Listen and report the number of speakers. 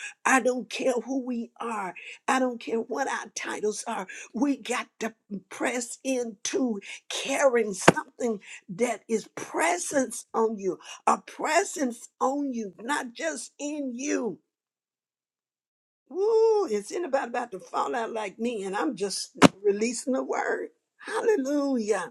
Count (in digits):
1